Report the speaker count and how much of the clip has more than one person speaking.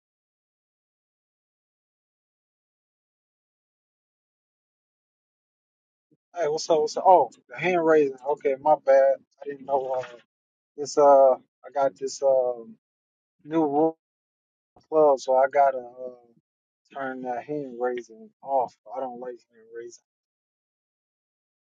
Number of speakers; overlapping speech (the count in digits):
1, no overlap